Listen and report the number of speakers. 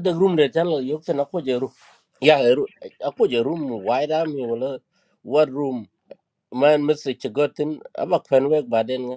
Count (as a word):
one